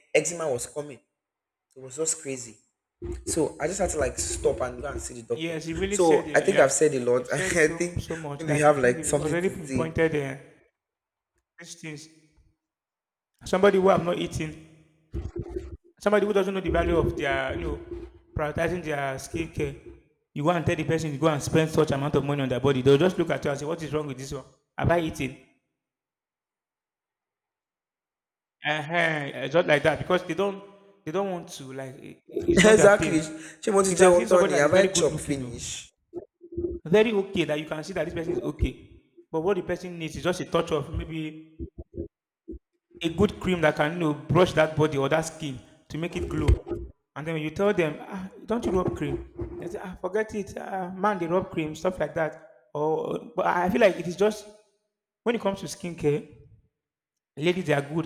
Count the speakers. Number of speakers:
two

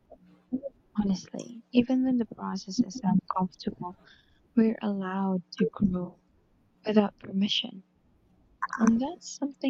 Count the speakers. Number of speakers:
one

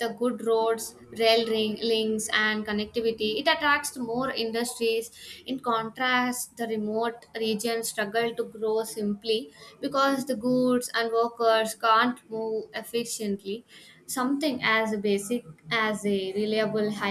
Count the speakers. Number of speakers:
one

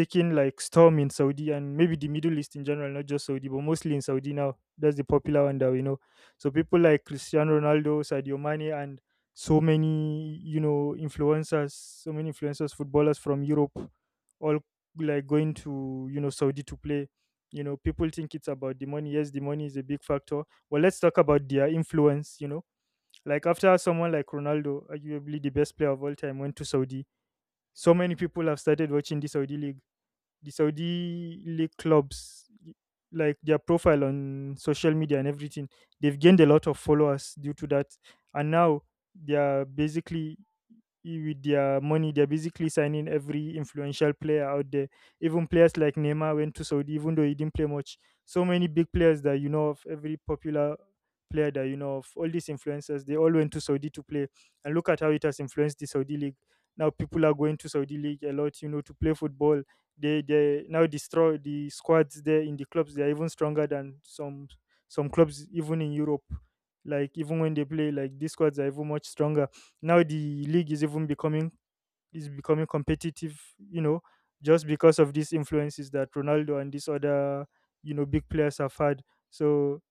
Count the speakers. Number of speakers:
one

